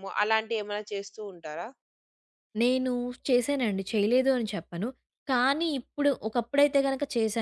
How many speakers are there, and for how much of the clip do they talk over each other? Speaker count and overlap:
two, no overlap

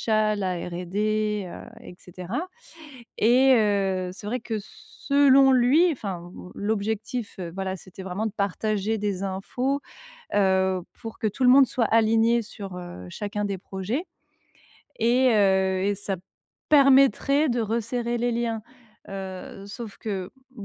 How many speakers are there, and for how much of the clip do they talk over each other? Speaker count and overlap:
one, no overlap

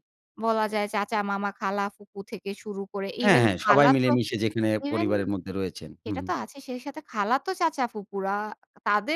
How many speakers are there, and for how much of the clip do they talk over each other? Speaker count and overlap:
two, about 16%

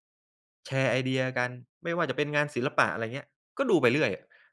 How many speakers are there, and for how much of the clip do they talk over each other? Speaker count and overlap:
one, no overlap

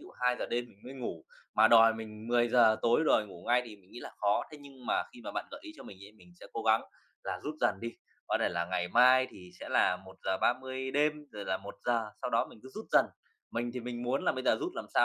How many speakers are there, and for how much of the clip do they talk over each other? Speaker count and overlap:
one, no overlap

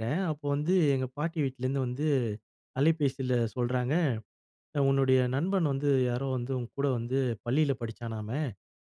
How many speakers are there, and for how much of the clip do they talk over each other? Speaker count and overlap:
one, no overlap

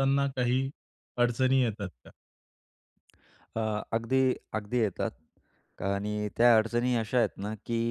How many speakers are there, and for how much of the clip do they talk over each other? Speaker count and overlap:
two, no overlap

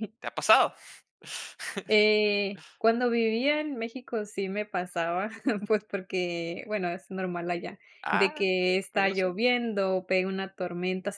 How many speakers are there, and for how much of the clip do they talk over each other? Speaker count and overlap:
two, about 6%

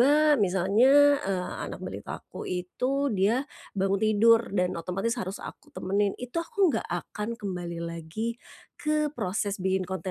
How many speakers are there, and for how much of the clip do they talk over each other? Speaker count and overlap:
one, no overlap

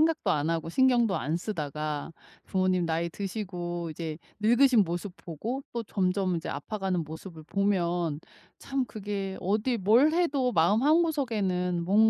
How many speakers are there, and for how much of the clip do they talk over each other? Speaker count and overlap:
one, no overlap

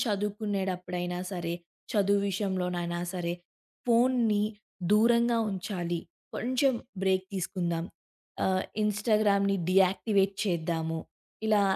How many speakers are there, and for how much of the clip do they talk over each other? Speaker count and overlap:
one, no overlap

